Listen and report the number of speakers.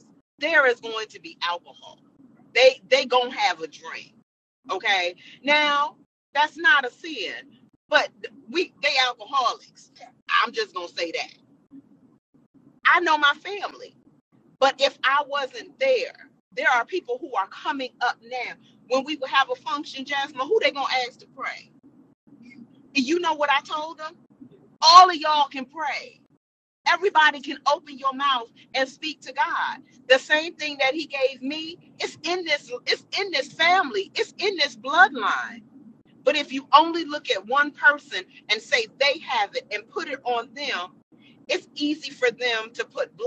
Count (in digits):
1